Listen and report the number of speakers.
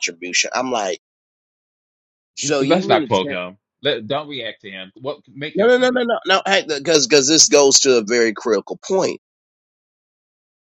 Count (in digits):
2